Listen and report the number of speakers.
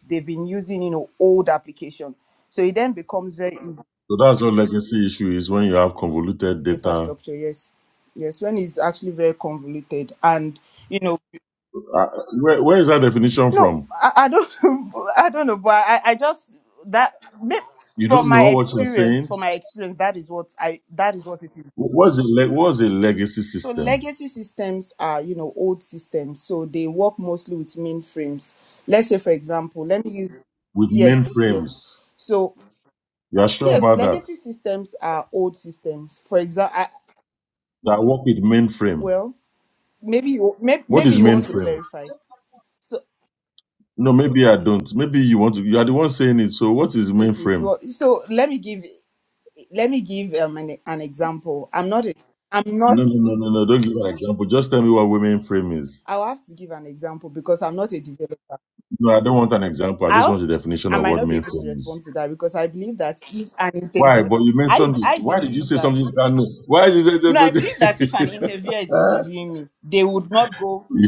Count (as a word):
two